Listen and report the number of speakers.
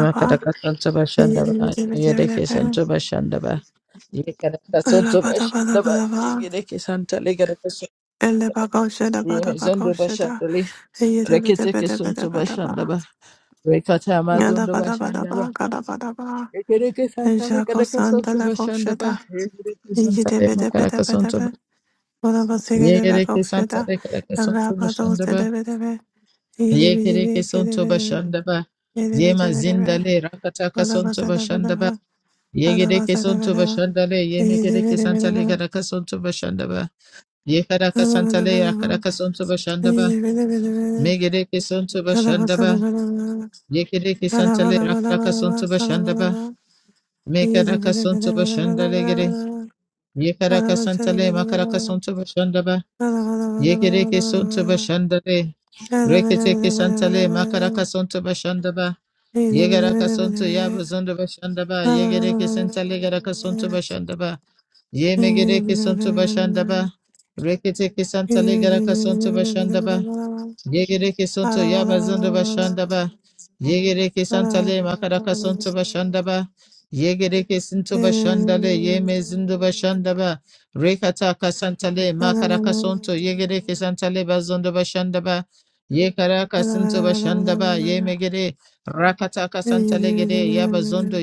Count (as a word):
two